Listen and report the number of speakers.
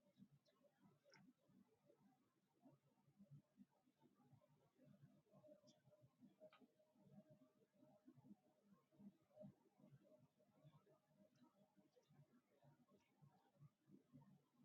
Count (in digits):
0